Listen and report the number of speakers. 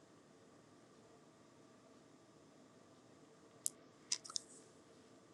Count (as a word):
zero